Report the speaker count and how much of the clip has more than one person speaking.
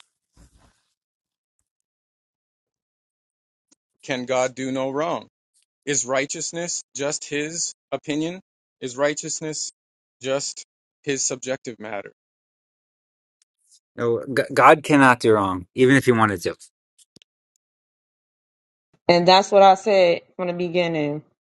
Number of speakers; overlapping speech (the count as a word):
three, no overlap